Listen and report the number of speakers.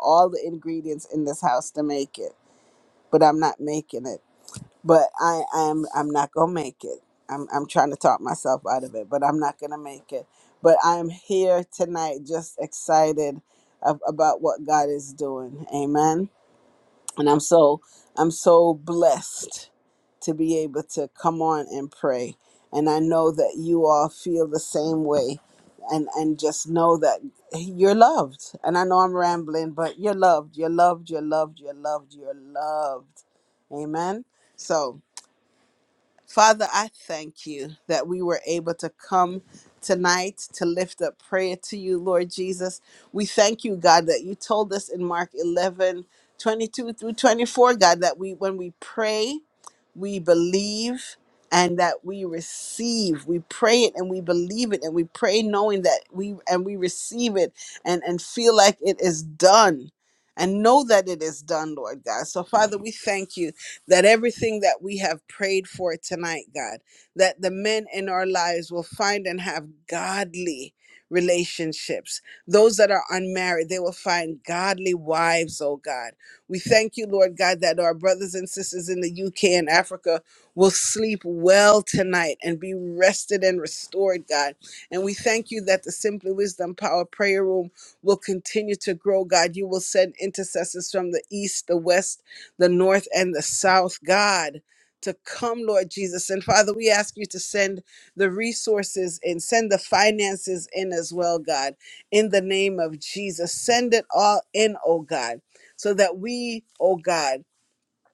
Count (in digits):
1